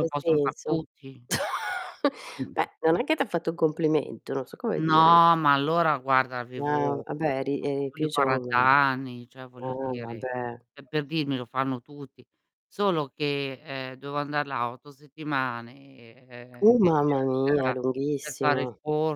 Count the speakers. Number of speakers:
two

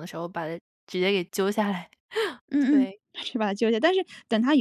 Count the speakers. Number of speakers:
two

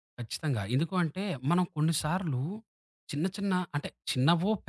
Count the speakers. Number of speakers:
one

